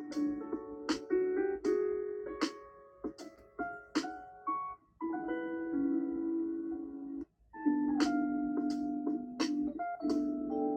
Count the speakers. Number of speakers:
0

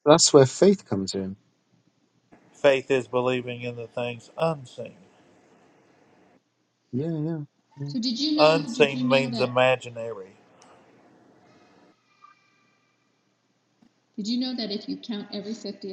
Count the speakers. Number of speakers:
3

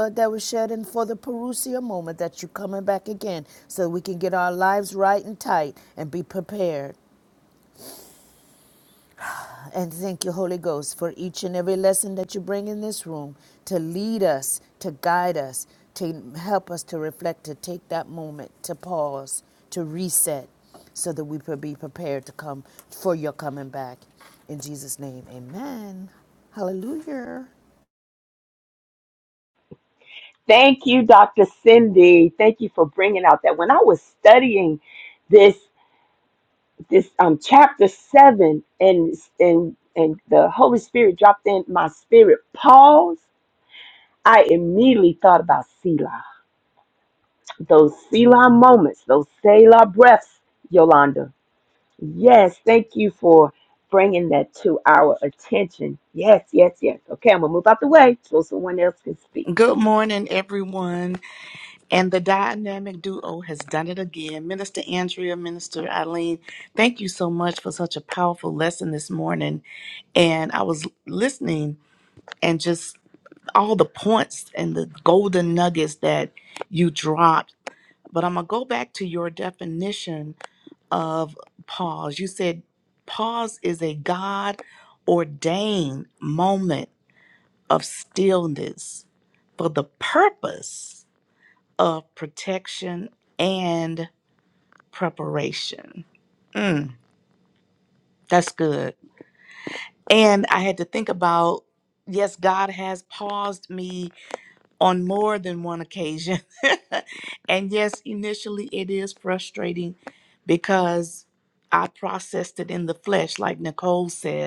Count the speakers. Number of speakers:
3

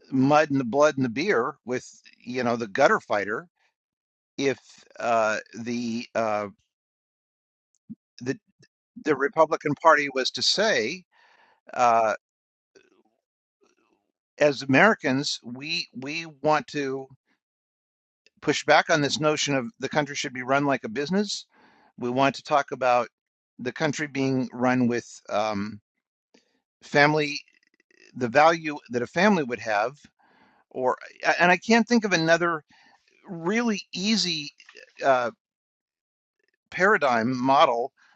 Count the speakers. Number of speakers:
1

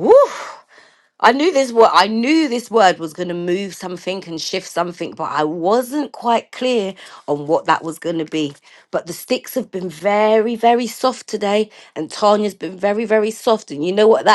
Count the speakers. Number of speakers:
1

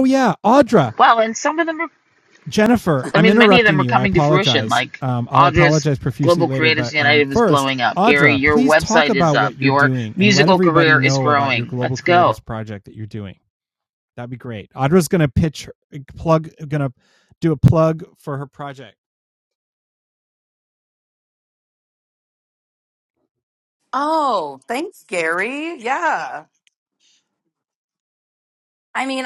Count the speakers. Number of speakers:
3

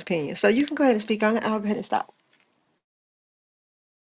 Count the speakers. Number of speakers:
1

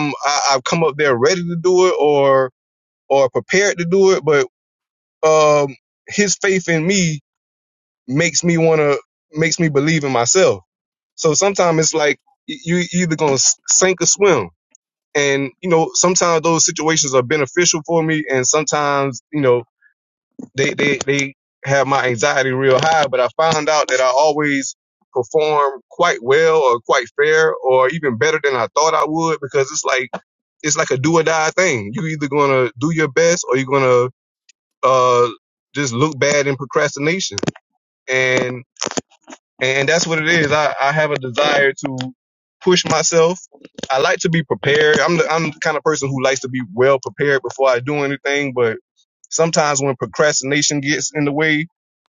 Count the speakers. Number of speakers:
1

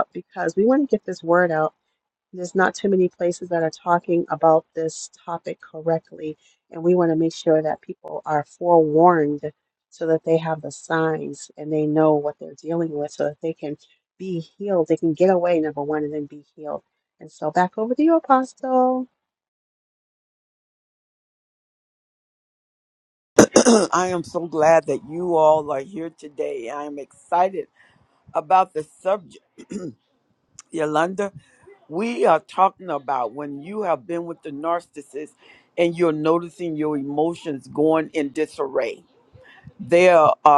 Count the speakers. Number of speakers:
2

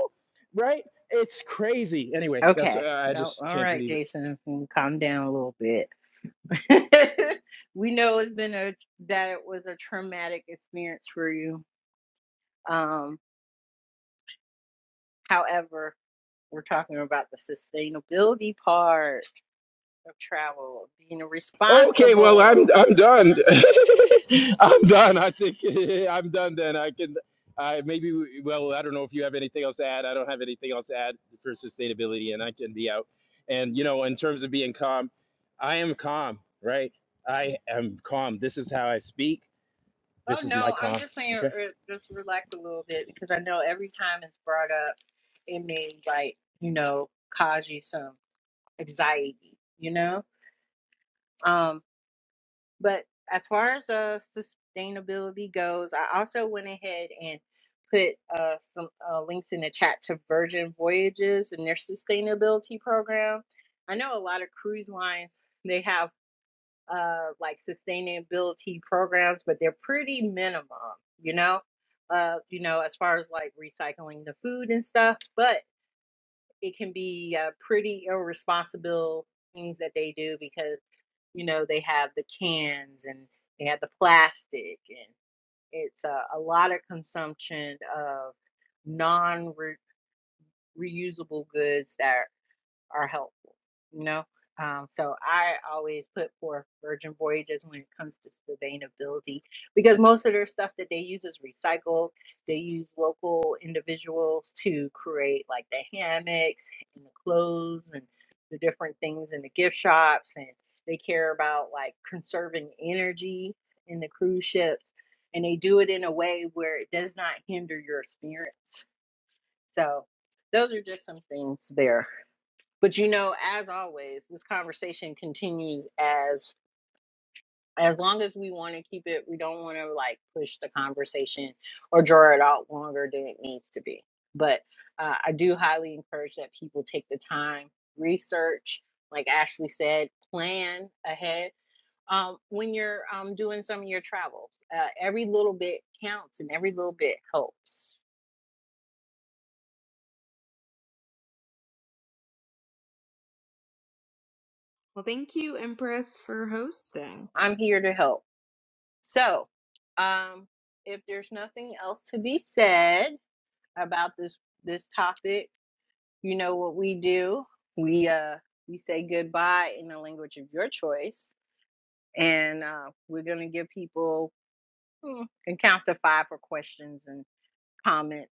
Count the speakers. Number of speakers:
3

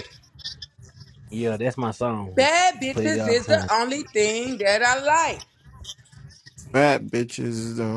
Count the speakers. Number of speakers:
3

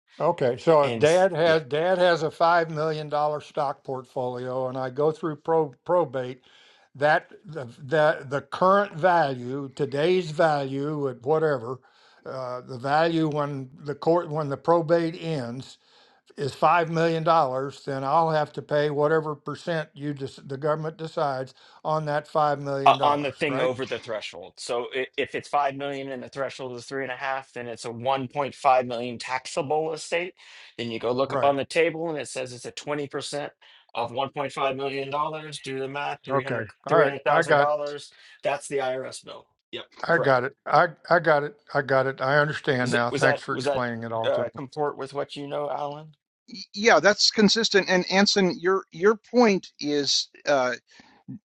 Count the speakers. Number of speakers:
3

